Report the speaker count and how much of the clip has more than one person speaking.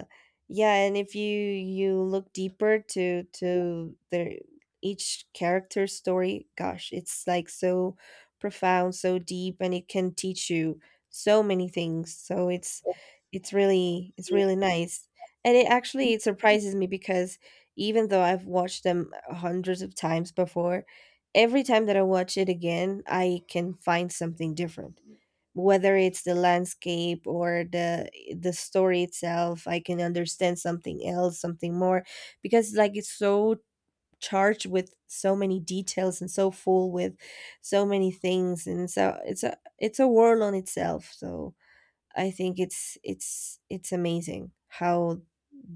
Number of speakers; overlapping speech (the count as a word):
one, no overlap